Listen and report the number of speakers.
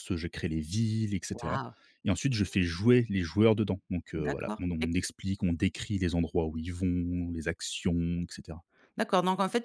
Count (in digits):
2